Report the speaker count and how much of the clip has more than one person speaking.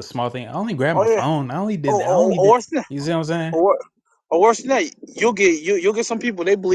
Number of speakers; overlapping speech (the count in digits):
2, about 20%